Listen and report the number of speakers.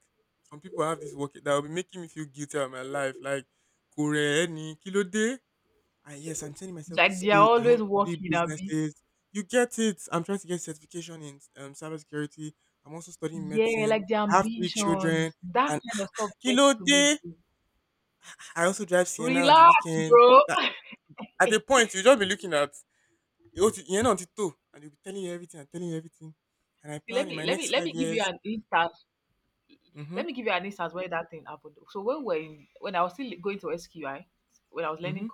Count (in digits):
2